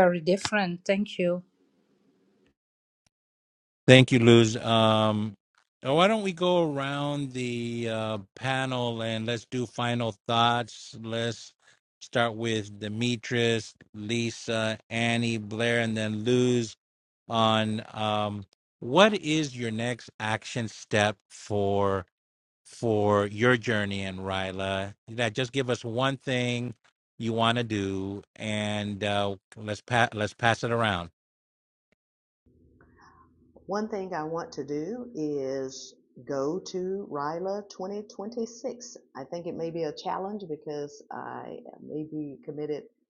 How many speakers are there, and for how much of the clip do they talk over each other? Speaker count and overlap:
3, no overlap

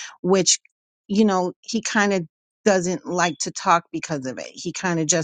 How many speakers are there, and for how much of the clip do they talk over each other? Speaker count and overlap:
1, no overlap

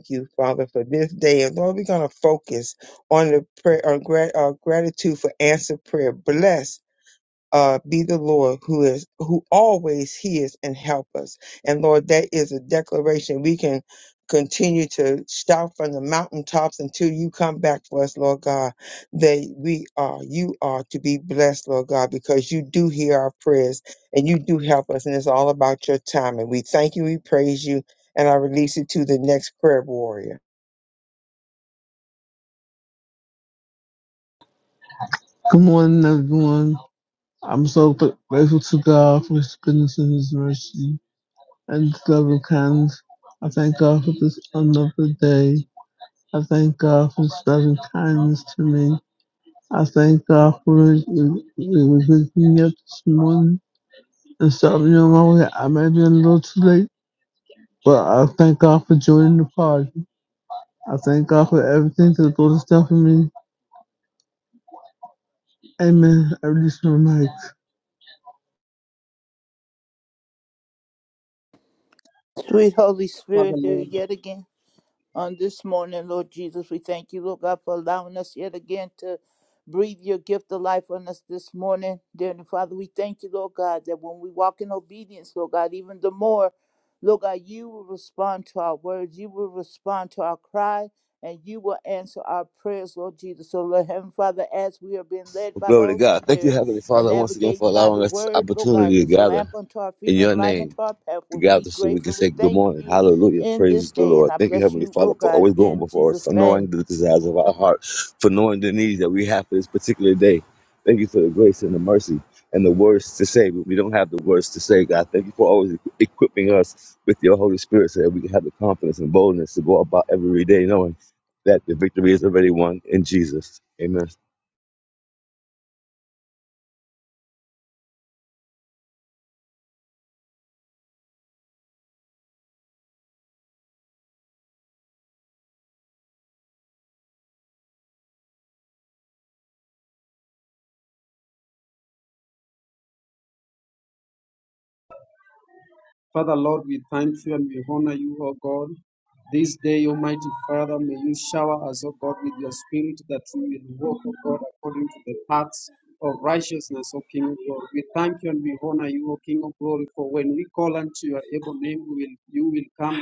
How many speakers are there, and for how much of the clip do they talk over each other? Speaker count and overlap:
5, about 6%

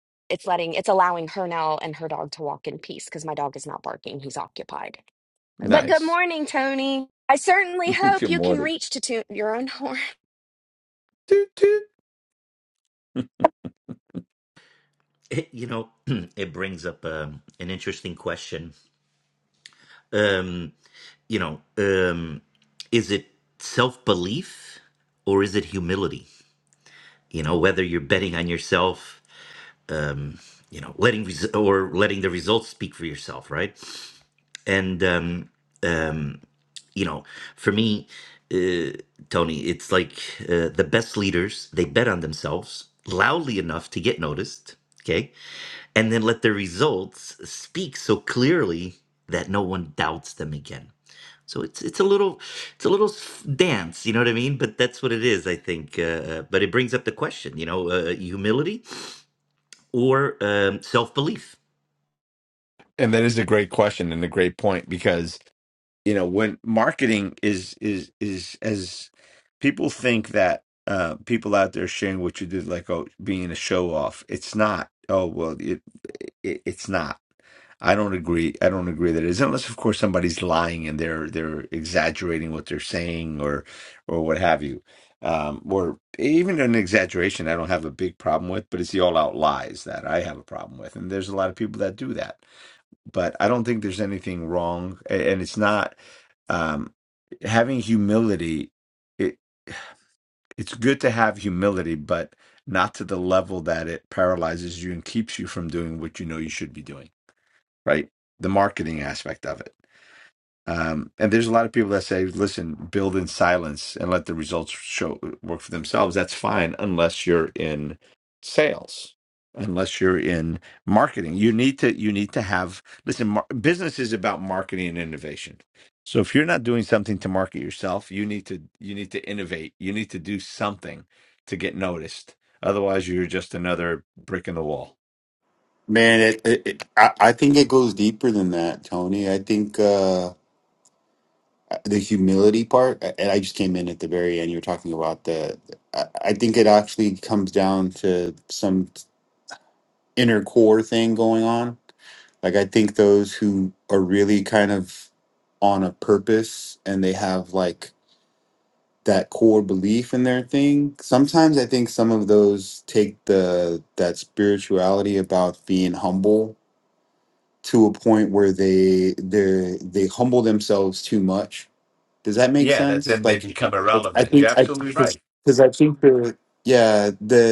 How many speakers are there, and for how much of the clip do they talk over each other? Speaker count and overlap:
4, about 1%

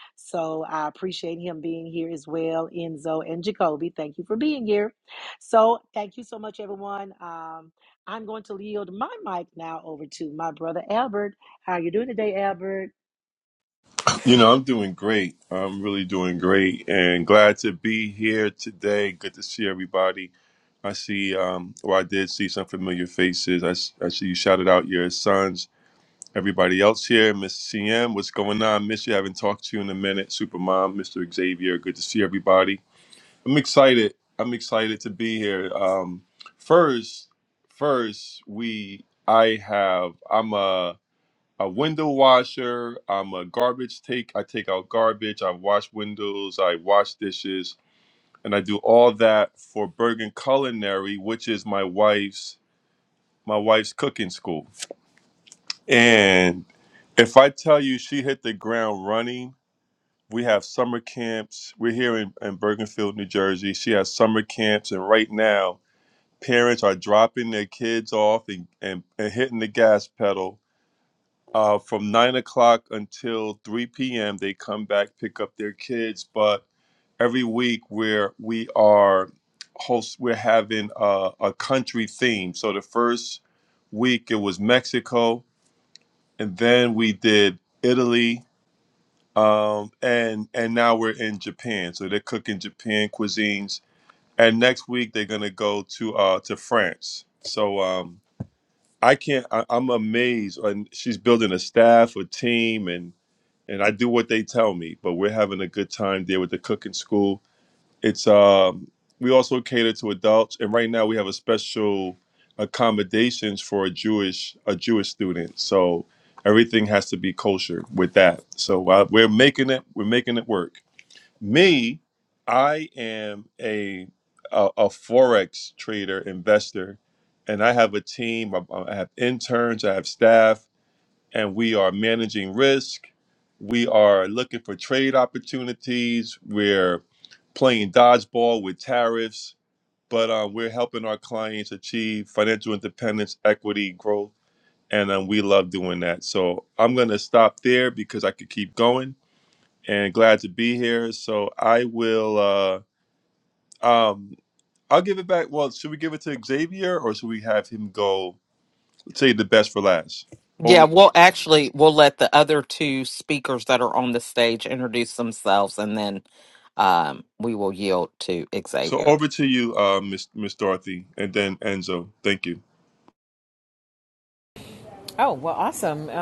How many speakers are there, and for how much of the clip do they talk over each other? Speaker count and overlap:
4, under 1%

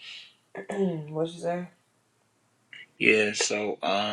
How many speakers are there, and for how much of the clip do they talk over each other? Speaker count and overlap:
2, no overlap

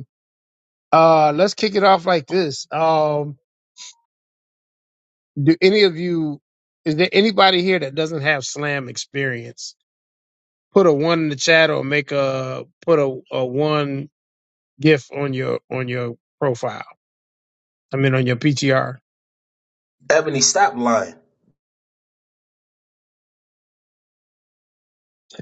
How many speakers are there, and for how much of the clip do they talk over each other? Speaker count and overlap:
2, no overlap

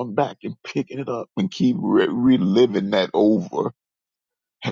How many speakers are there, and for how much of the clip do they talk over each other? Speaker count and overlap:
1, no overlap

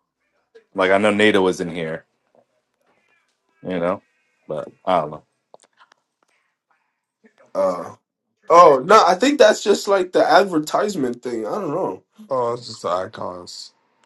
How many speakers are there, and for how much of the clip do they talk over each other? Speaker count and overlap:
3, no overlap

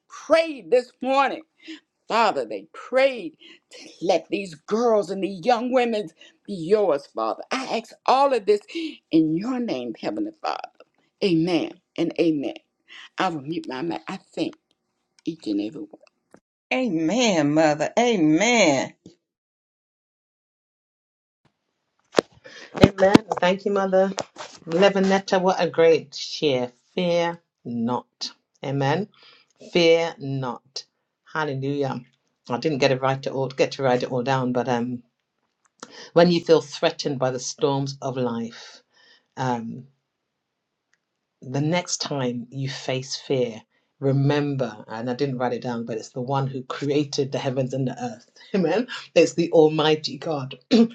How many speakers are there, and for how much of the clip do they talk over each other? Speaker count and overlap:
3, no overlap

